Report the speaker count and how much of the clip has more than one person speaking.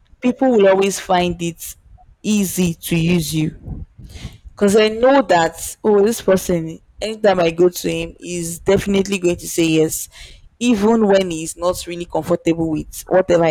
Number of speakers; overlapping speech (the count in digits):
1, no overlap